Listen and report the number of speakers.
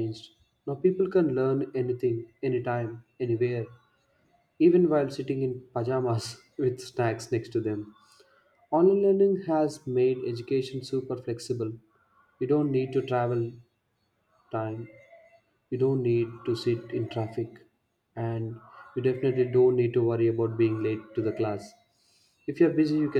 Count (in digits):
1